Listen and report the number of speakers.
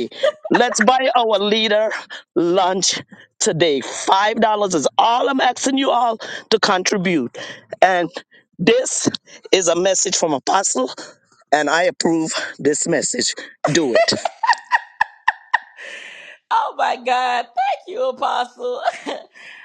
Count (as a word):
two